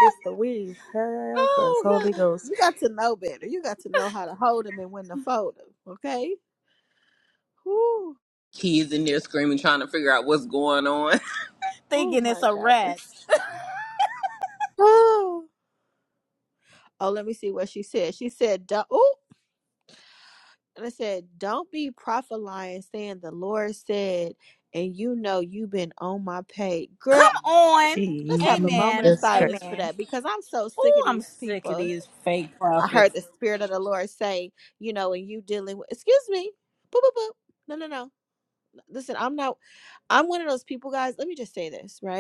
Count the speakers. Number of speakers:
four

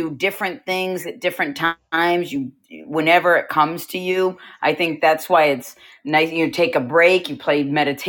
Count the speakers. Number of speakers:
one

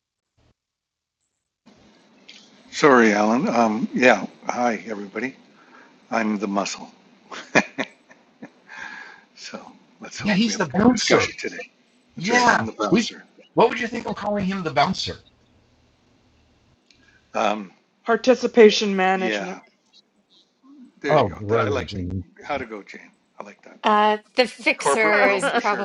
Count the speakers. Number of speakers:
four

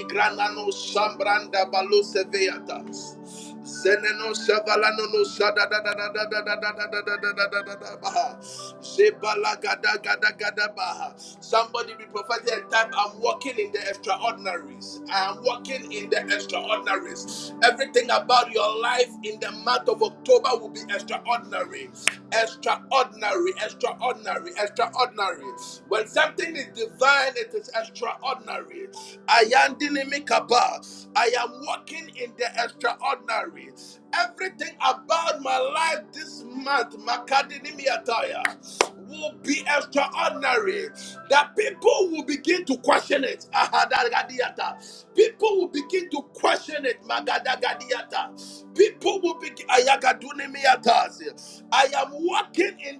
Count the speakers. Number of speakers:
one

